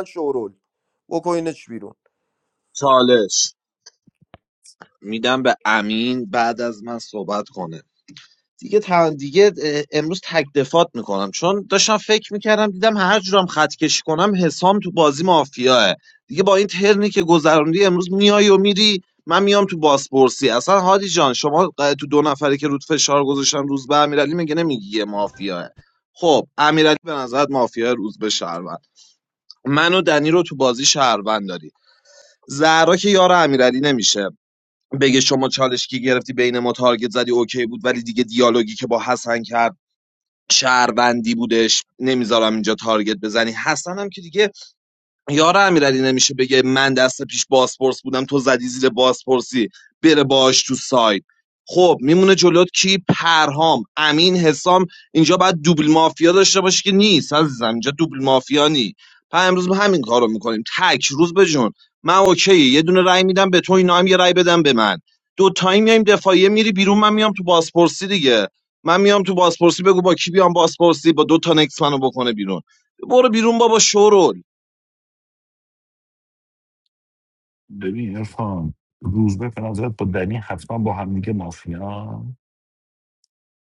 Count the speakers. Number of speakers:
three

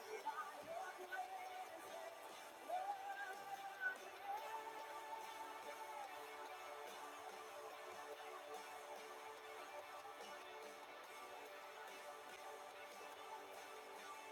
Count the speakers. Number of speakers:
zero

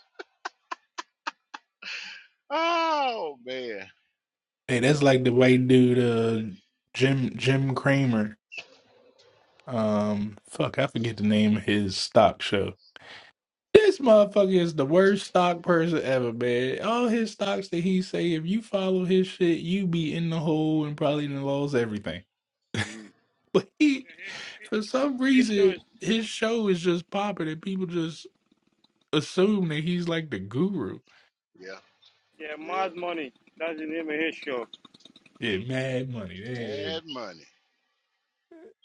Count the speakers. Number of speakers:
three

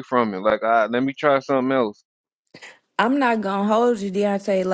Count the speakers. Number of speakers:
two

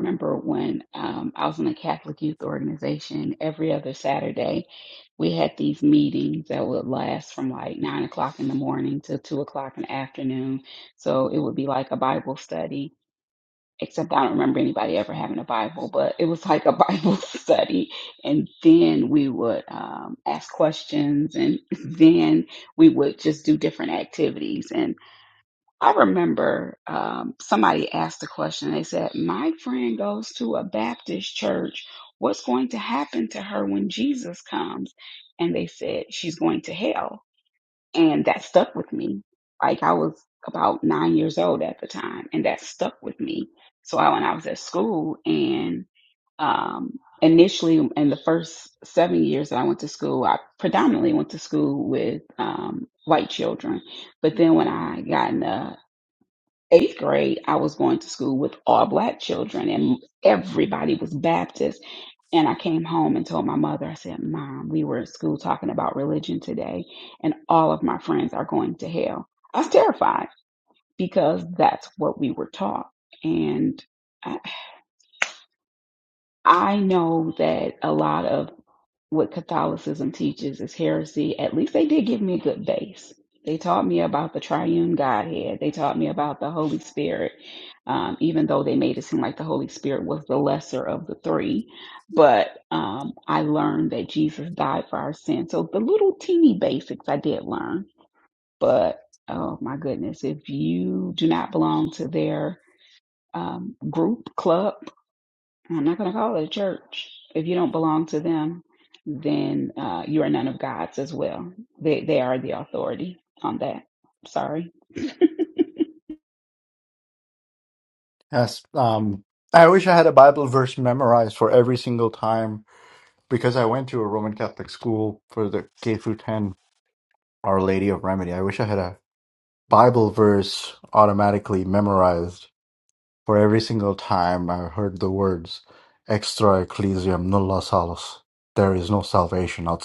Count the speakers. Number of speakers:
two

